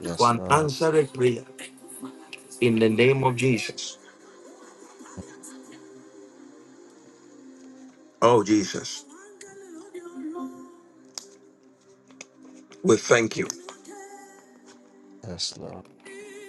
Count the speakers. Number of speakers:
two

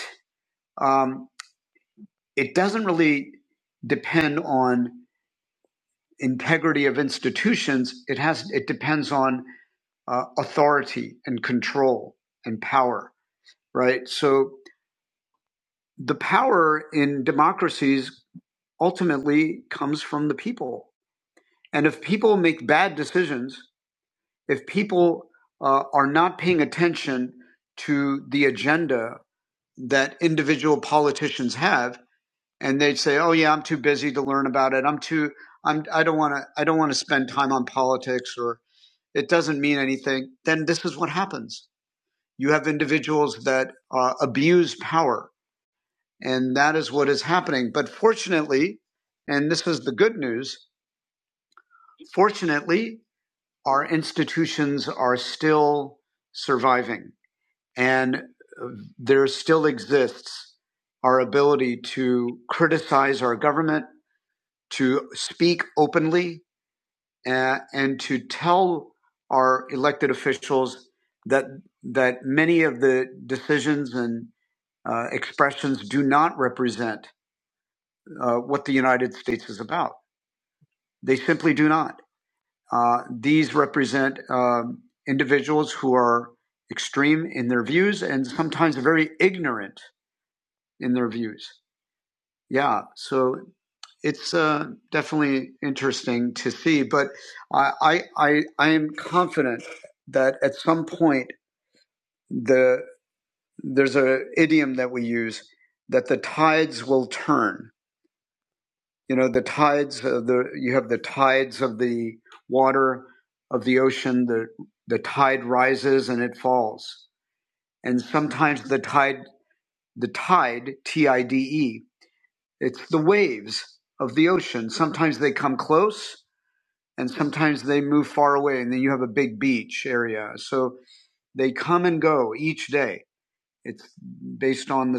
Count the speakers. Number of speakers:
one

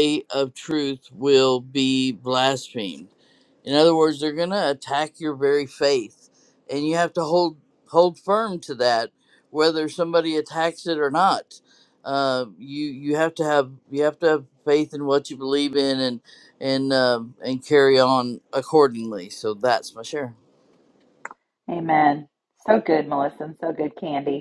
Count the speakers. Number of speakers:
two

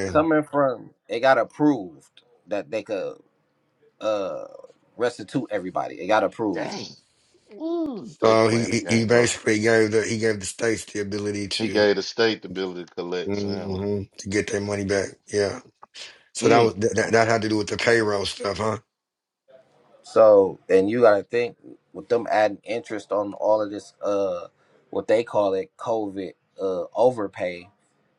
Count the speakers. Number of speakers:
three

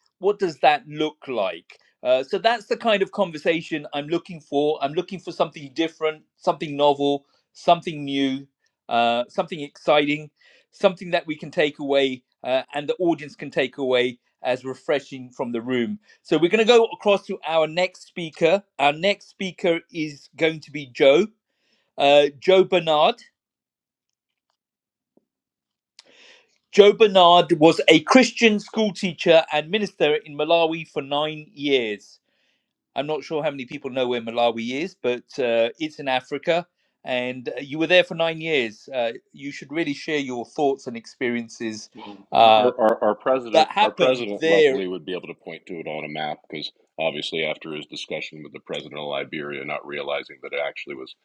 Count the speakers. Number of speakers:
two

